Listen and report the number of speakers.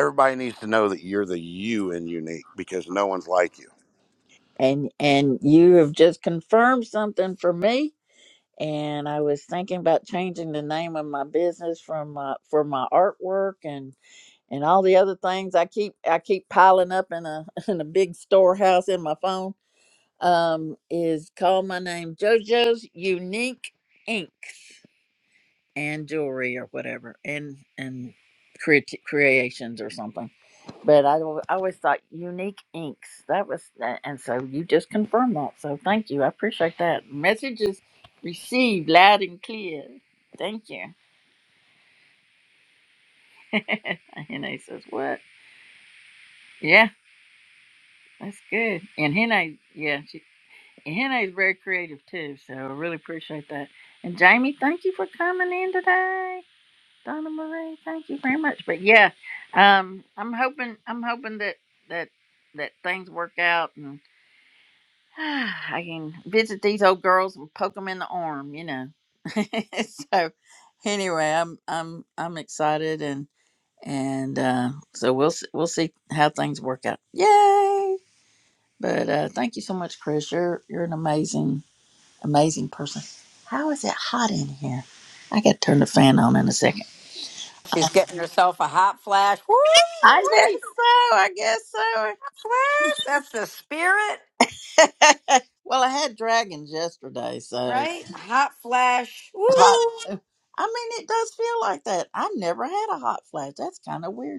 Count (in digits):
3